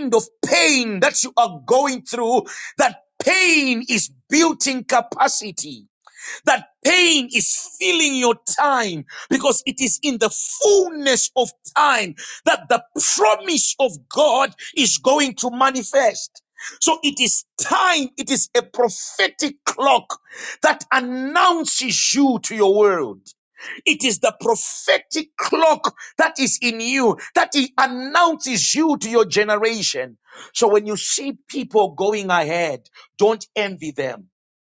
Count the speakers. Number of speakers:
one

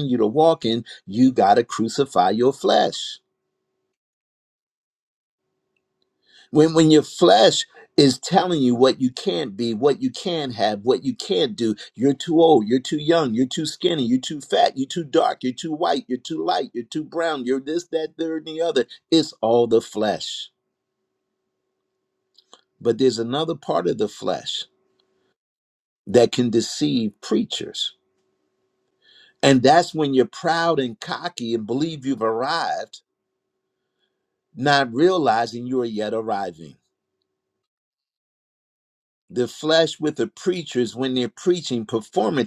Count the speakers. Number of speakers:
one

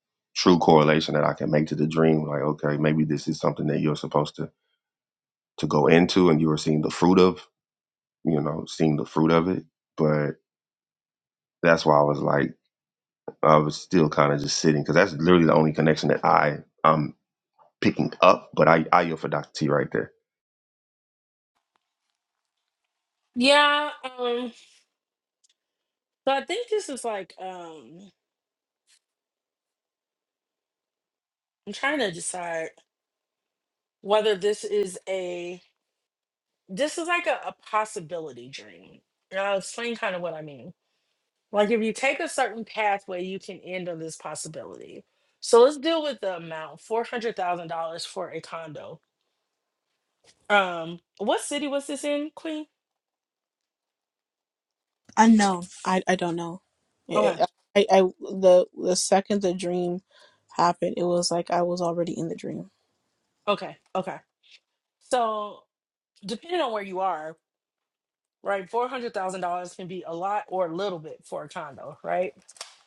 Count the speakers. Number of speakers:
three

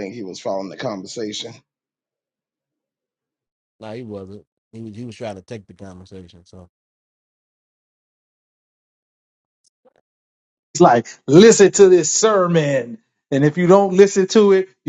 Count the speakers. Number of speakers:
three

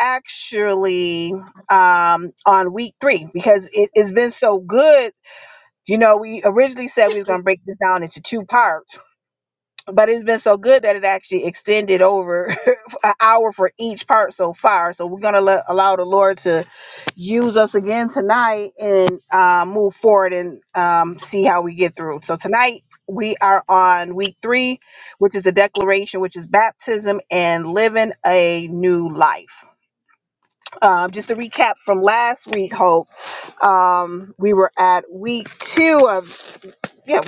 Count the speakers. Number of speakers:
one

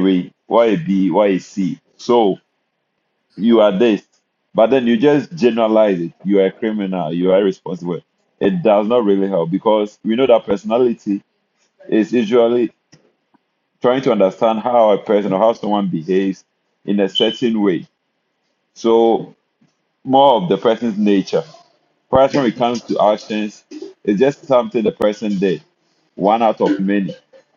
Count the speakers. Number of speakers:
one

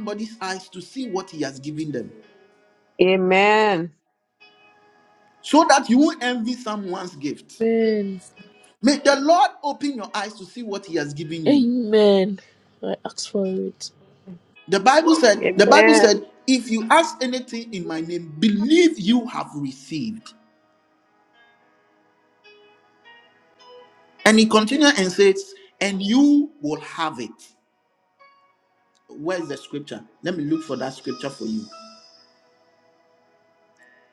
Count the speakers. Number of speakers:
three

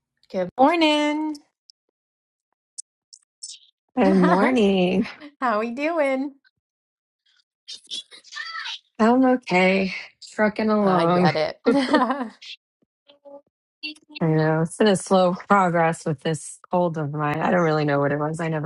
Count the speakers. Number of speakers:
two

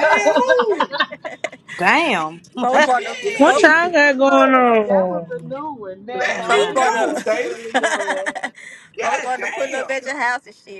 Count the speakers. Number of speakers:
five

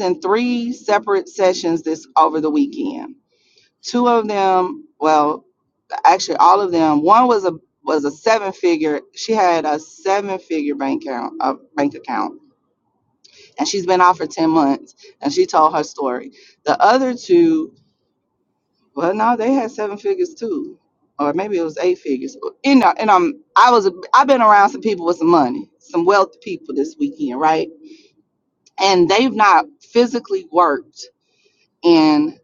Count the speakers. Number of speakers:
one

